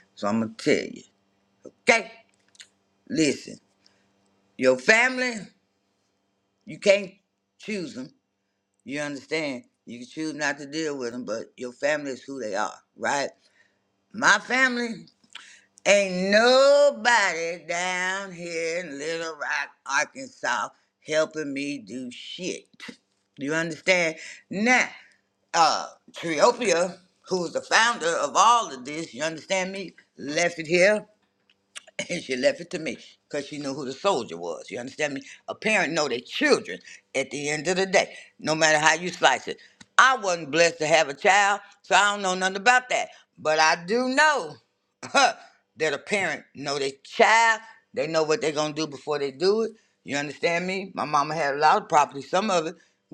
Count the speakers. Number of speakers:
one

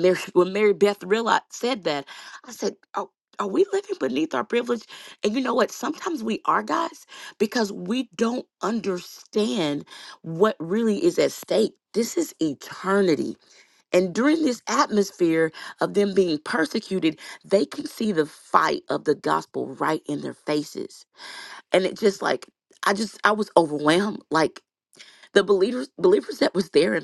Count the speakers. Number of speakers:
one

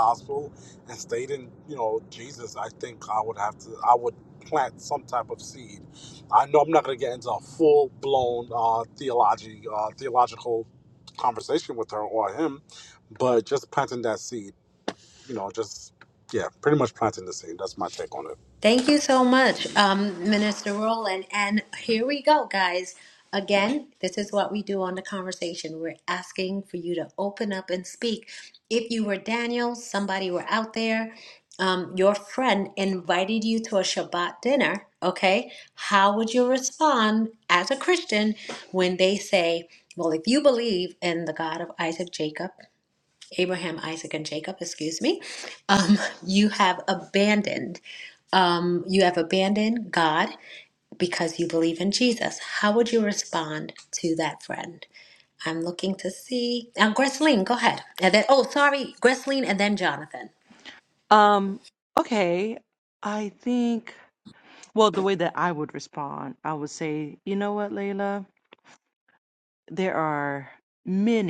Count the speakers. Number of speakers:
three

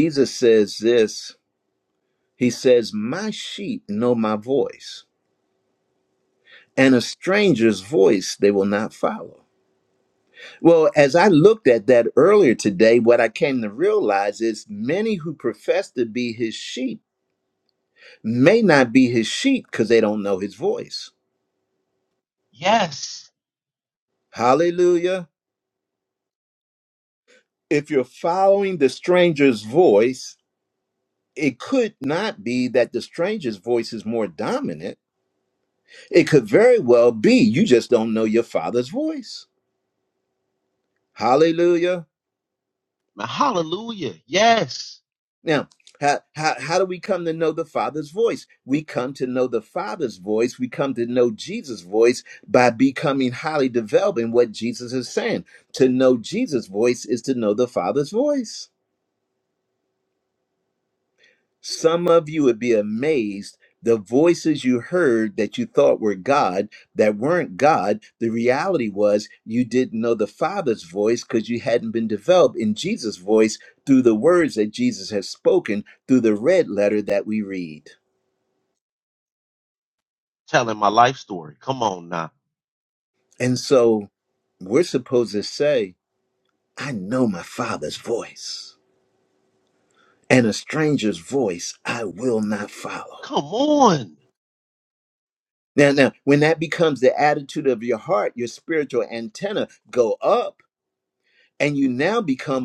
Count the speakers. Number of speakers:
two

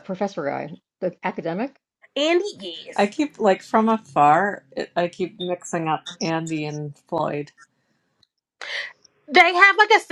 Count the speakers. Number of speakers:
three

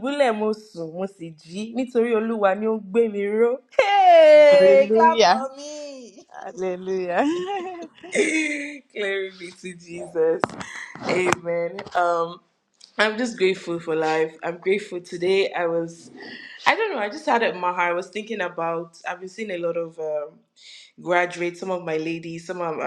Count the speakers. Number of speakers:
two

